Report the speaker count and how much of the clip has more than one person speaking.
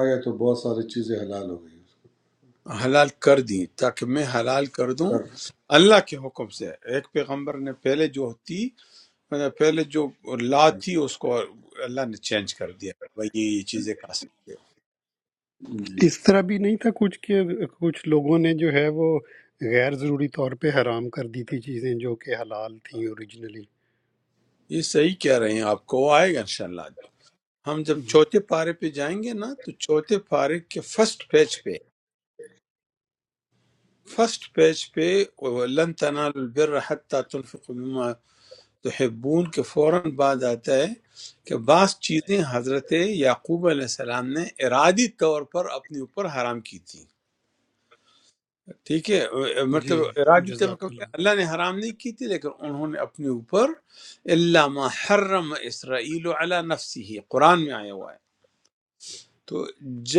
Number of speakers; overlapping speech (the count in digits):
3, about 2%